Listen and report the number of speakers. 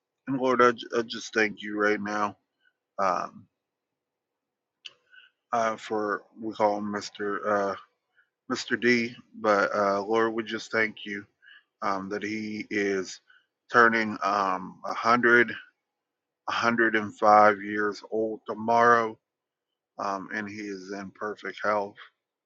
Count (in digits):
1